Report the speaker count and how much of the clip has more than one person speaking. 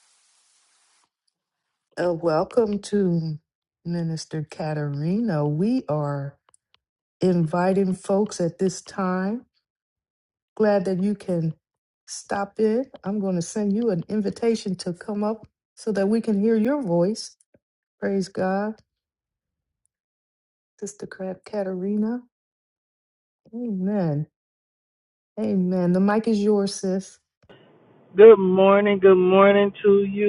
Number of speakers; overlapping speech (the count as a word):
two, no overlap